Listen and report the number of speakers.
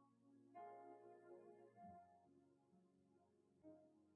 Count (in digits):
0